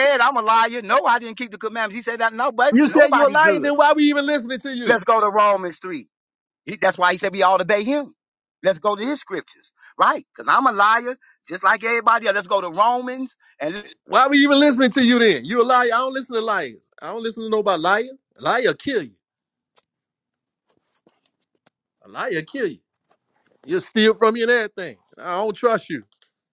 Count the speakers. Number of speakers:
2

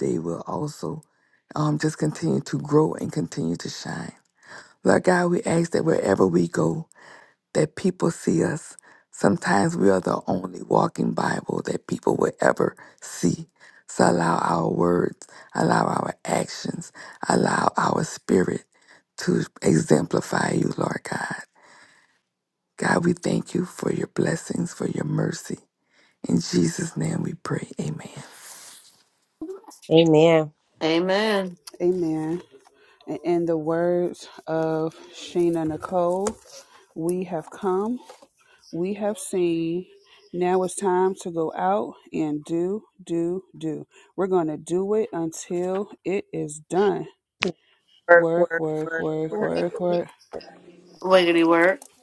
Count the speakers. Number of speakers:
4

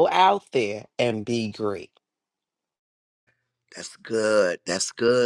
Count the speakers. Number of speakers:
2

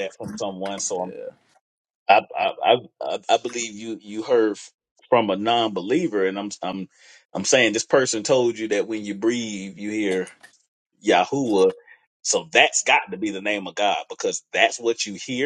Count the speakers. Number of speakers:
1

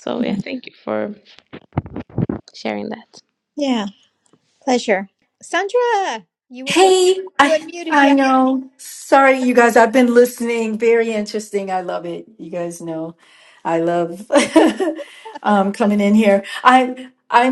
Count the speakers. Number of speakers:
3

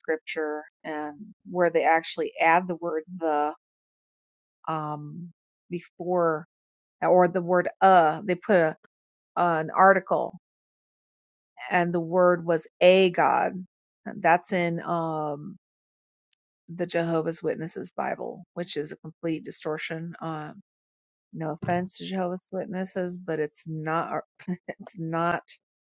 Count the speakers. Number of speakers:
1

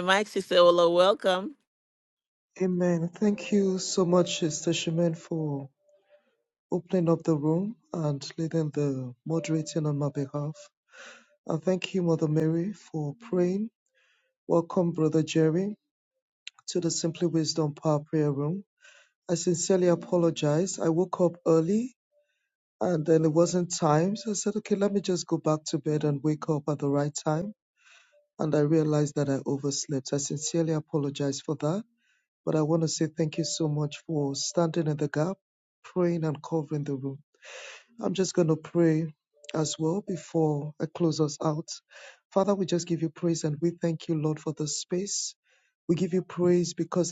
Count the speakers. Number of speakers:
2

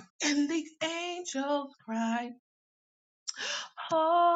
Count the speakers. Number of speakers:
1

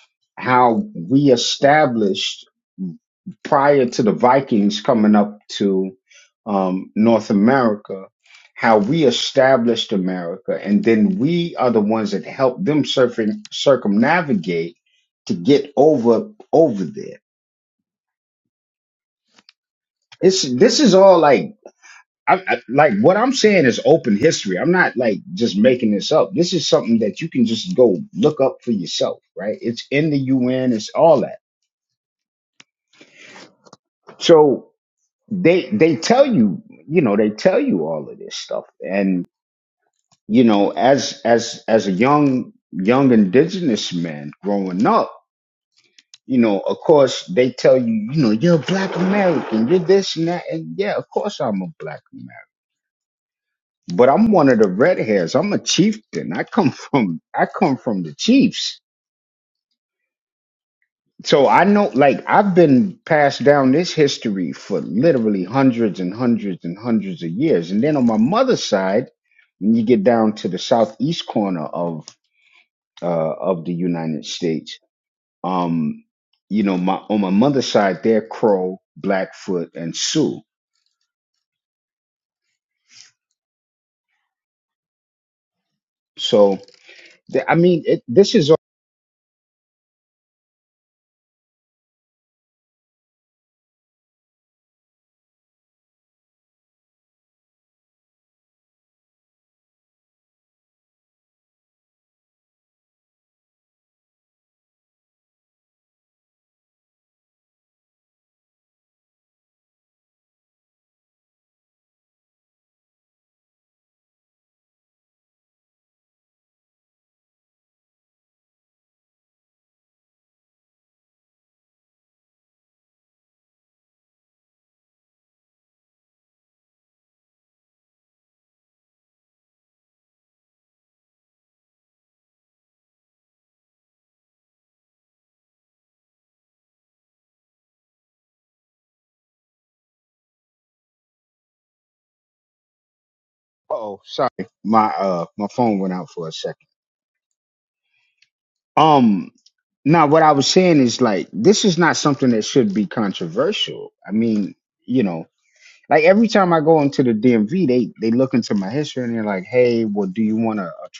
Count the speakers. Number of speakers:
1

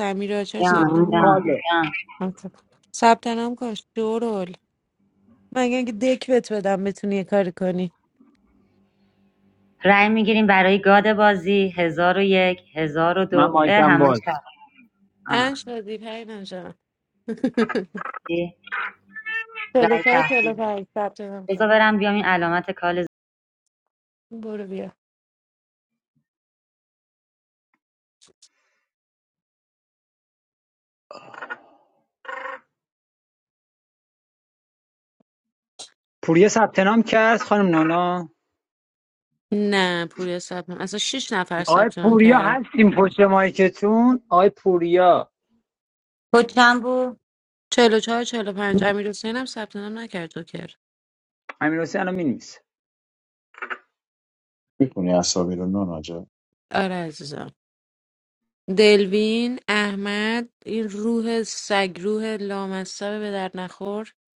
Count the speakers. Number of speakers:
4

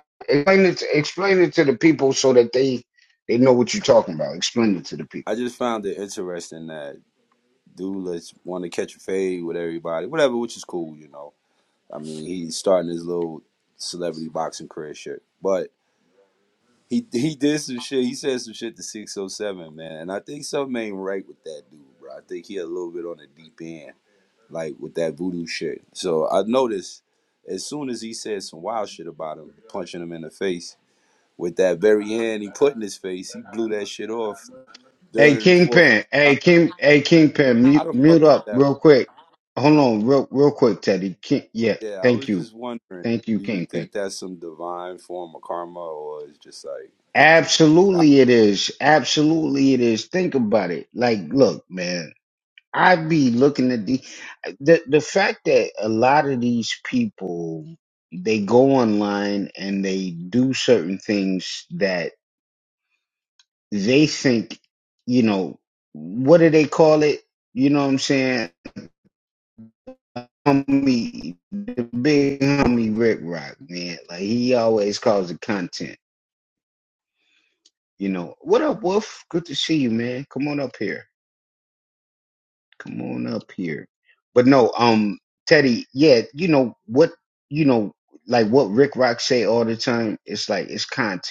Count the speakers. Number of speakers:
2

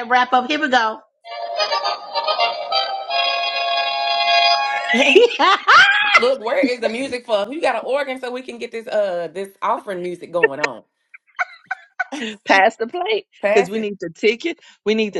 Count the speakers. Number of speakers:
3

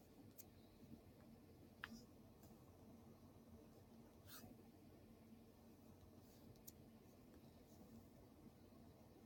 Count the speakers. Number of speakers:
0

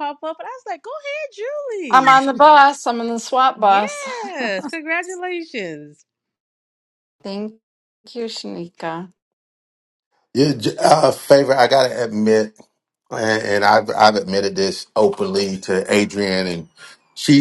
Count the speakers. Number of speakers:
3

